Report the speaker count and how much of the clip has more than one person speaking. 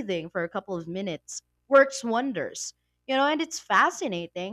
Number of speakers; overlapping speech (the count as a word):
one, no overlap